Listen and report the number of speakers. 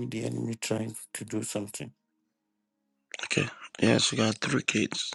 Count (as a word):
two